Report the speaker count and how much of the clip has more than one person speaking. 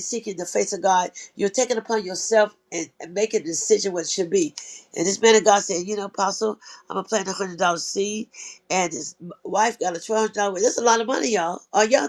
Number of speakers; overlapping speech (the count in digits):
1, no overlap